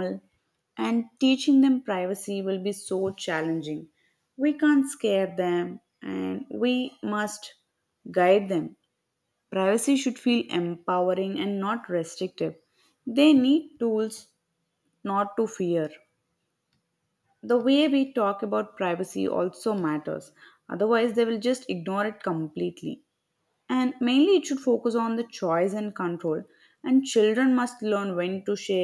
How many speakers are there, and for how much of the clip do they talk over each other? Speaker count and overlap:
1, no overlap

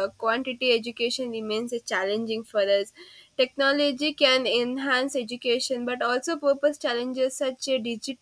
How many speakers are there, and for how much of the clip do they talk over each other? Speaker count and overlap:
1, no overlap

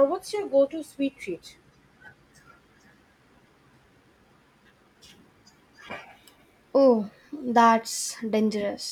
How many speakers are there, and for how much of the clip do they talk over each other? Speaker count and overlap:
2, no overlap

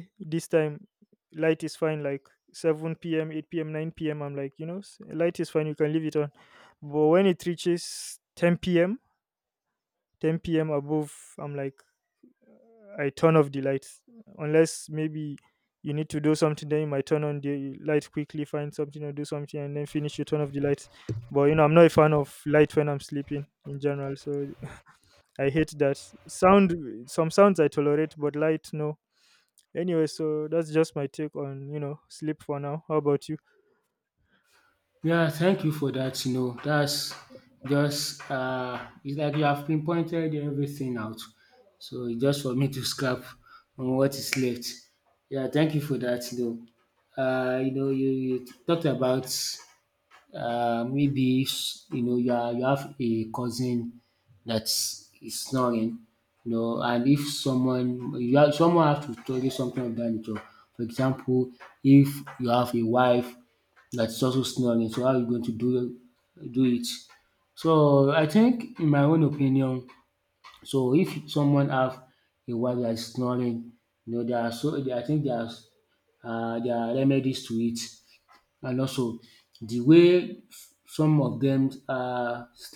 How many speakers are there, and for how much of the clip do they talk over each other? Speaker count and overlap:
2, no overlap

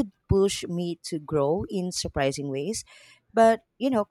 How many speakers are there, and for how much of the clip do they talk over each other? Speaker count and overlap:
1, no overlap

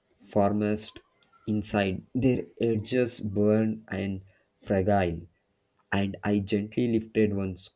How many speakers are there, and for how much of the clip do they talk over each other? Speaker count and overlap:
1, no overlap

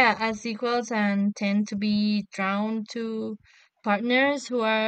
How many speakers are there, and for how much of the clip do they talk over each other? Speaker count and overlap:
1, no overlap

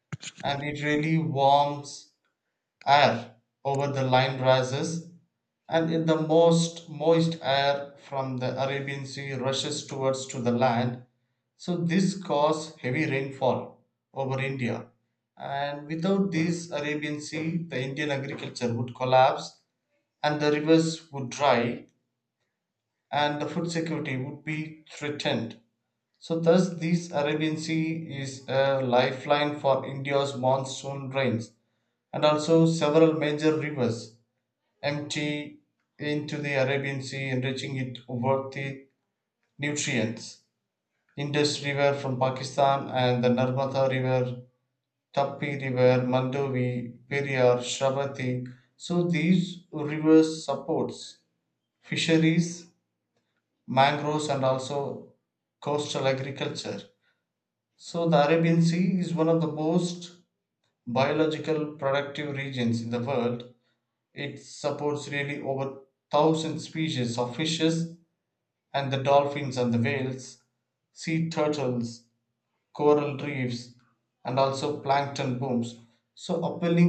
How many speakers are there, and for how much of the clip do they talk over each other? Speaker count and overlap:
1, no overlap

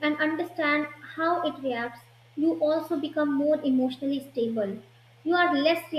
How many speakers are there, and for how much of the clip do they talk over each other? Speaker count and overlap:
1, no overlap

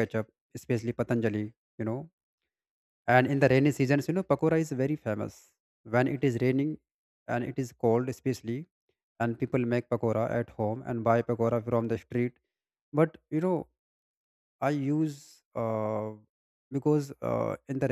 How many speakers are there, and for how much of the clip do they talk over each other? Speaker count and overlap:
1, no overlap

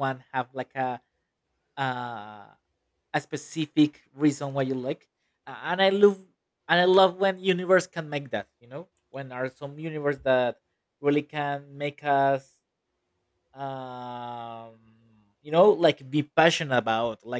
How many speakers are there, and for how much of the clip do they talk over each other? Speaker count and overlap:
1, no overlap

